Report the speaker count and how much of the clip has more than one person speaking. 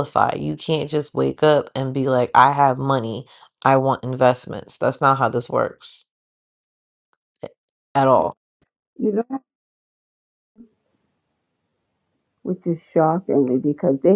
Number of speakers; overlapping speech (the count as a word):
two, no overlap